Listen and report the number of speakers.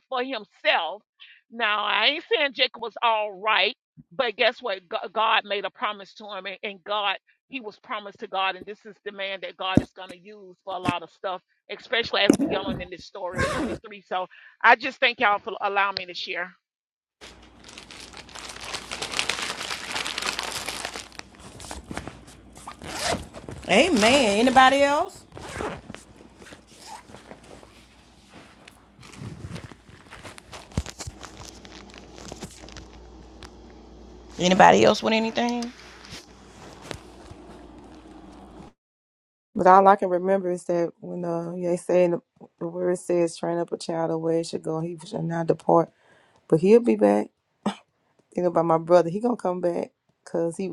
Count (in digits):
3